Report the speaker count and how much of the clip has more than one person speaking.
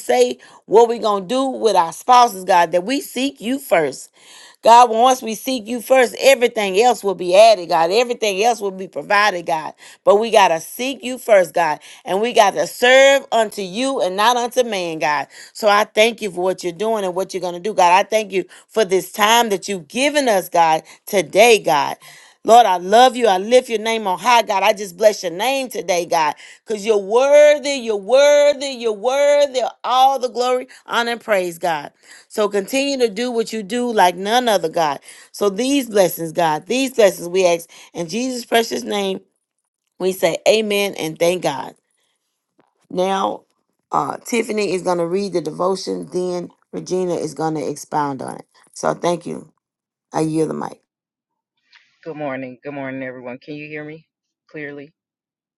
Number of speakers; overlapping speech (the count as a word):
two, no overlap